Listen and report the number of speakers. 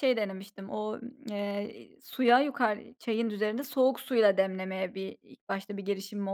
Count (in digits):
1